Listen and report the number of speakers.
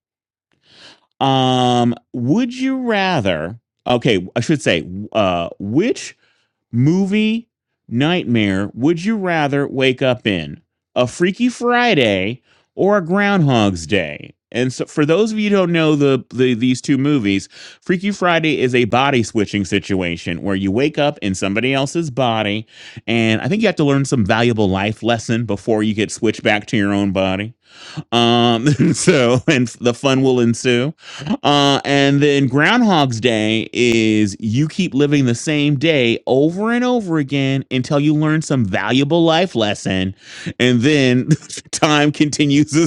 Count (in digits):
1